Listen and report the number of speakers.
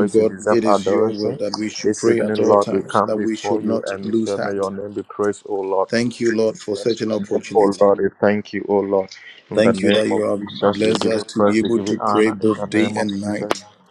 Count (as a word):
two